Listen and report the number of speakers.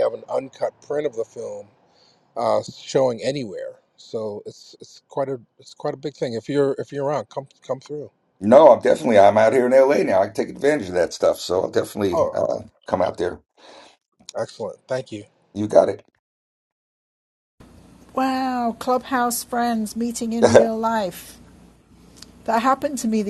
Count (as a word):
three